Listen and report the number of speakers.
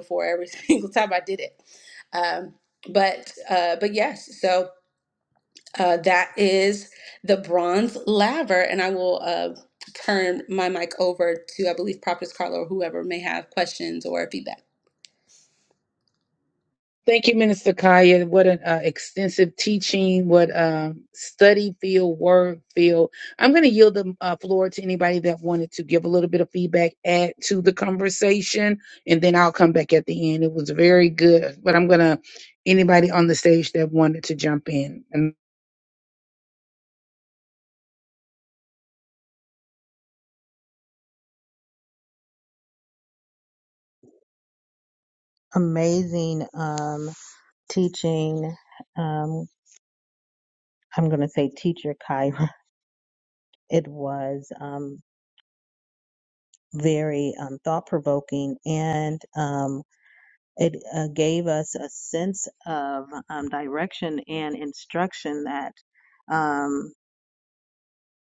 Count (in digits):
3